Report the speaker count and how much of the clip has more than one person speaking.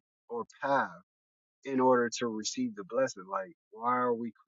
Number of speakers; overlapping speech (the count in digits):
1, no overlap